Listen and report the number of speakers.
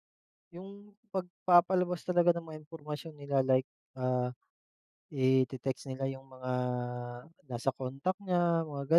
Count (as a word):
one